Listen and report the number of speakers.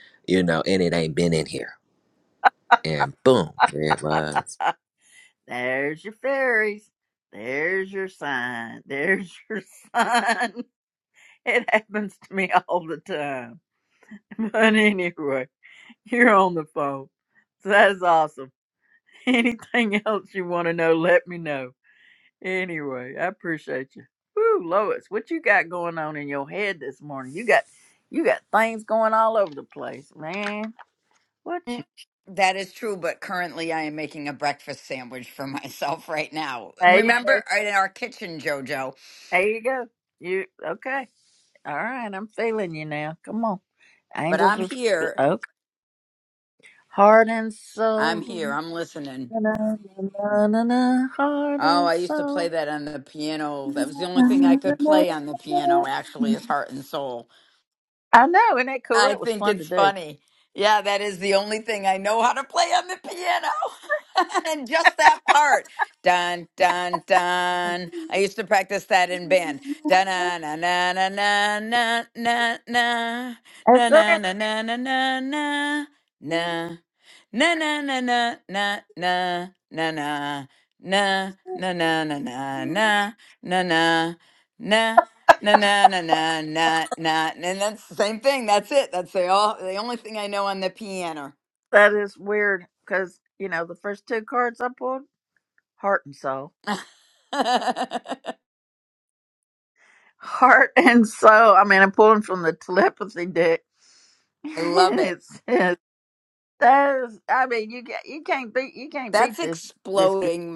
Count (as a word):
three